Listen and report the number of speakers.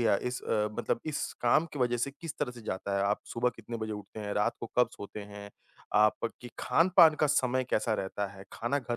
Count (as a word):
one